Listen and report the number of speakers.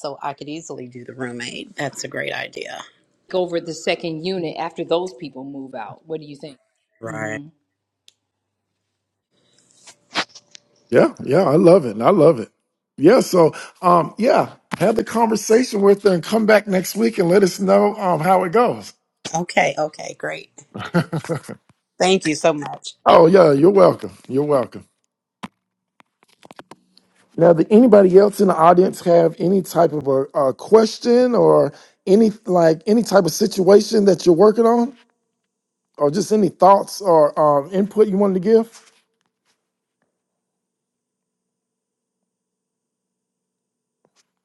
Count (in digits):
3